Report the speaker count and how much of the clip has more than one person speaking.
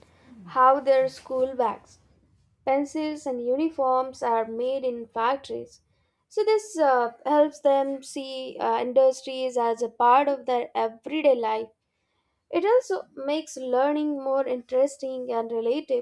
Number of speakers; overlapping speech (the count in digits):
1, no overlap